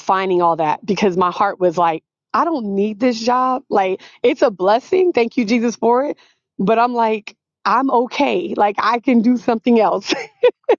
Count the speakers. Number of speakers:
one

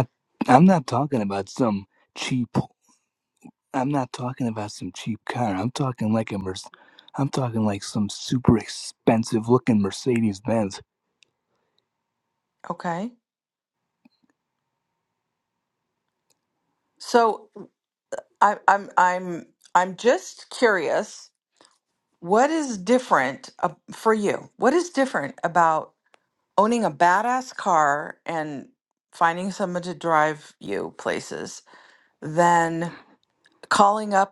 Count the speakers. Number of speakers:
two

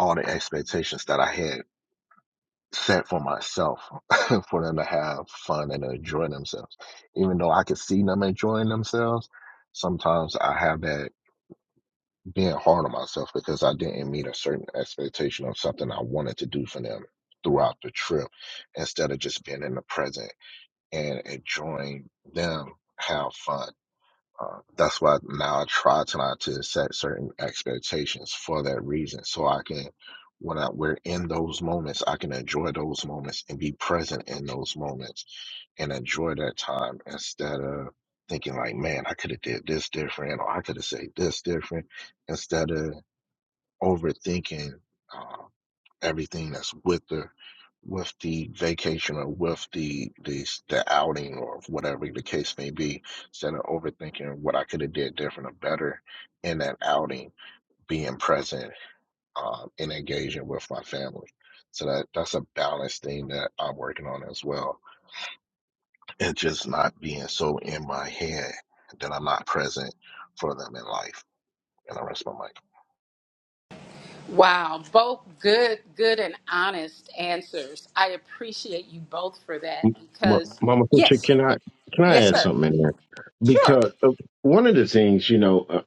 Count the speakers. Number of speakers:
three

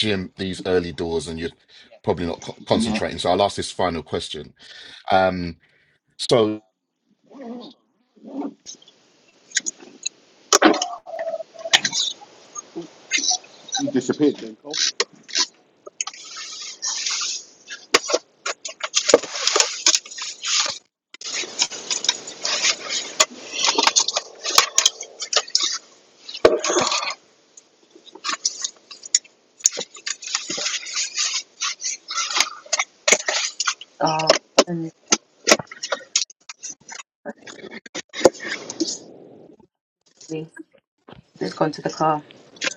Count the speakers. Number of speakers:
three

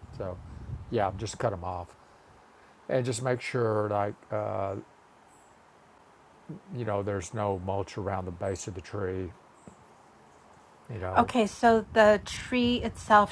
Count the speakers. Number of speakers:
two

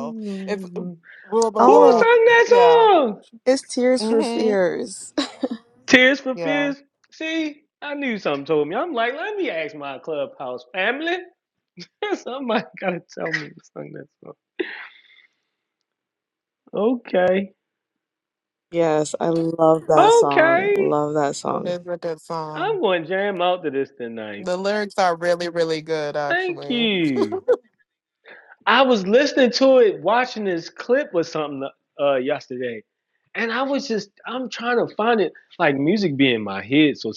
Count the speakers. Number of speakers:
three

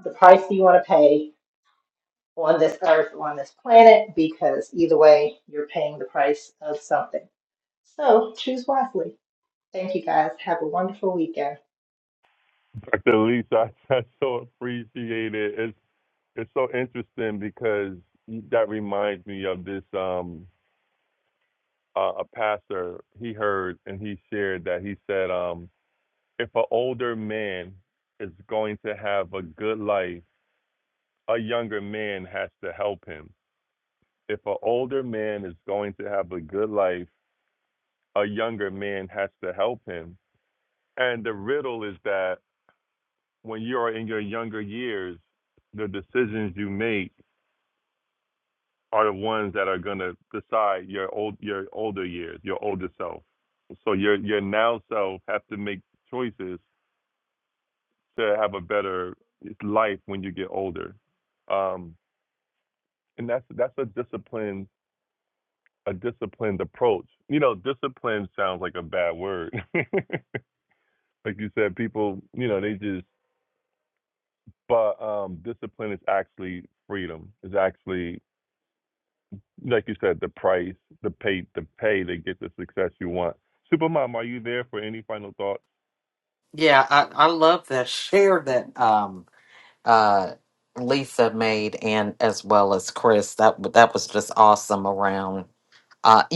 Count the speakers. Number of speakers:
three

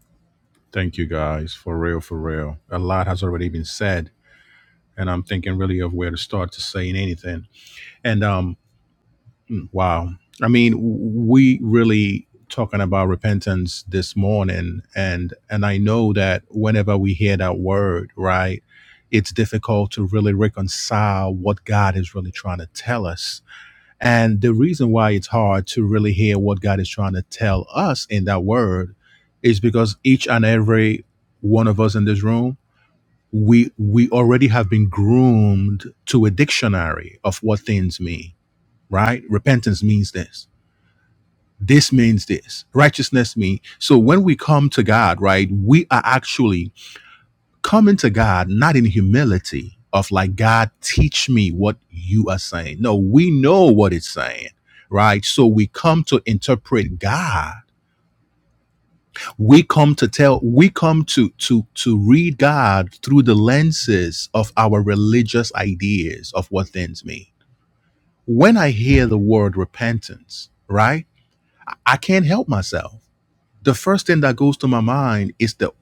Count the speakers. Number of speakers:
one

